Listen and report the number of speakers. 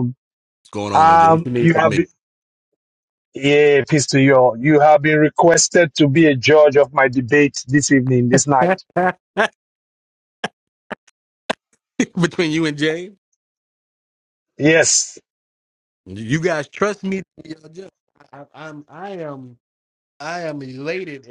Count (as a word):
two